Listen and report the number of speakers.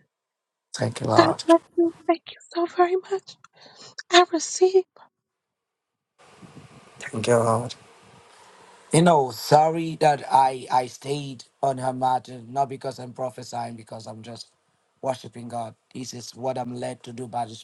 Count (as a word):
two